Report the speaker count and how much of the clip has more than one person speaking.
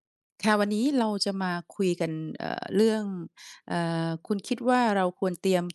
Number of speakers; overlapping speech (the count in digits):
1, no overlap